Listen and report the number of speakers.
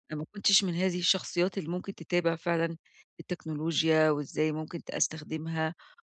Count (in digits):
1